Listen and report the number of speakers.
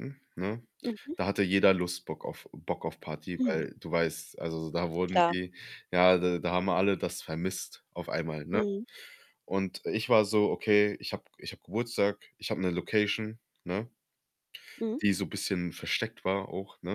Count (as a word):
two